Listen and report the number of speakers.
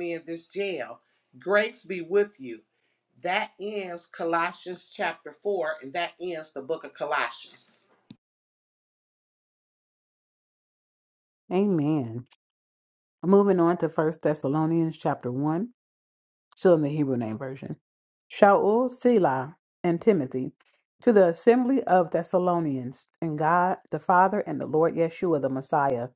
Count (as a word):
two